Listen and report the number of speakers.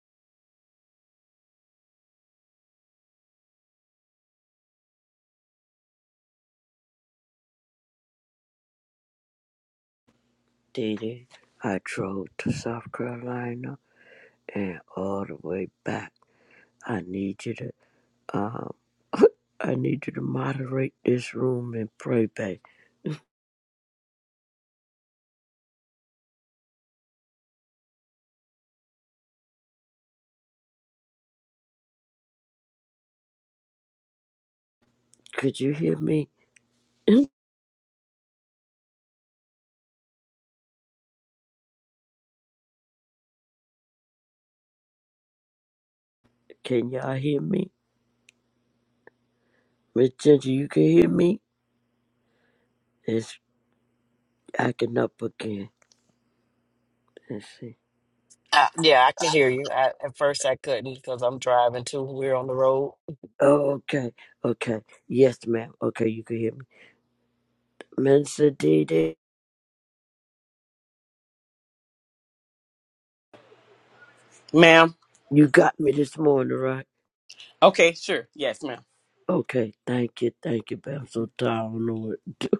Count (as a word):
three